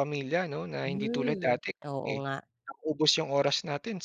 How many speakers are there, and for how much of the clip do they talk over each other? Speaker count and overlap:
2, about 25%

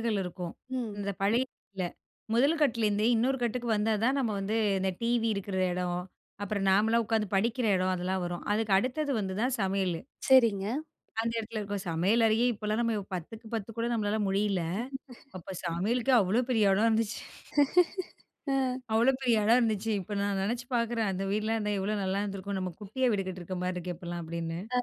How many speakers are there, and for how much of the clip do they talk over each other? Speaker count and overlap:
2, under 1%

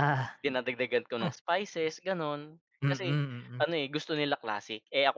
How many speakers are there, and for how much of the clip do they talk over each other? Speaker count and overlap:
2, about 5%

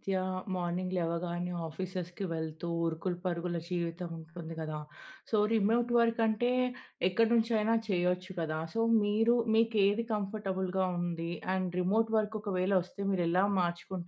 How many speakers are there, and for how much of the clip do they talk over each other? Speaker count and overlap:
1, no overlap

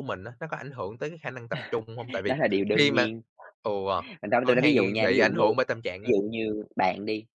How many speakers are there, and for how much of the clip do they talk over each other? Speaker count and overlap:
2, about 22%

